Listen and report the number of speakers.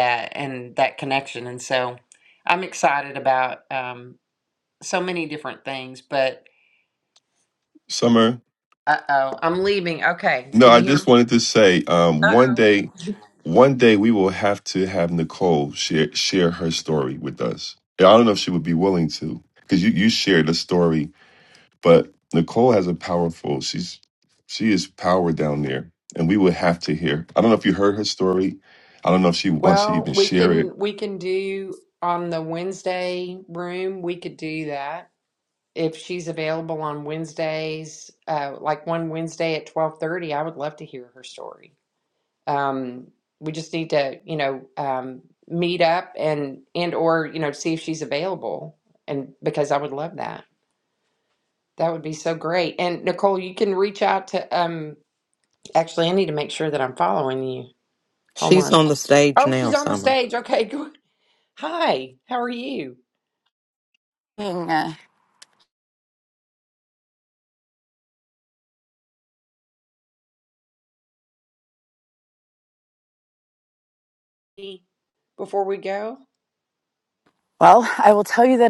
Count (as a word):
four